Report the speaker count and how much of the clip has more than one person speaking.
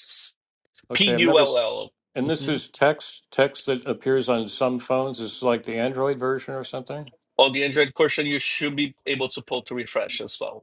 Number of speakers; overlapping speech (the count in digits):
2, about 9%